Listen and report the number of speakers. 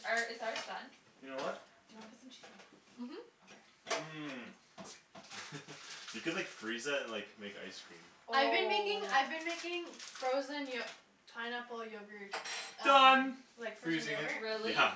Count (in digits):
4